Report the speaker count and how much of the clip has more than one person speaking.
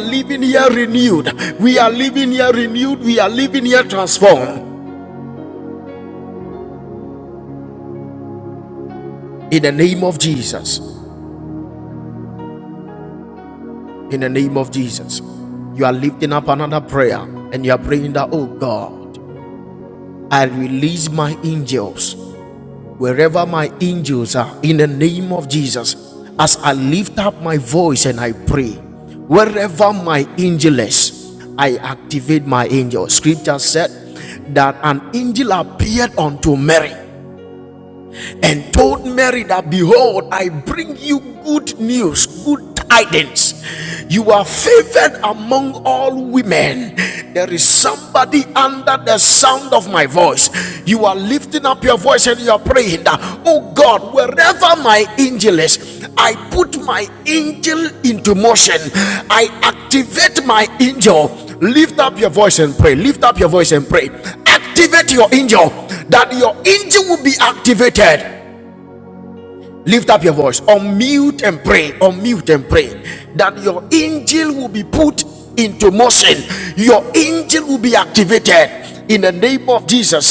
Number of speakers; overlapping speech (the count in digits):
1, no overlap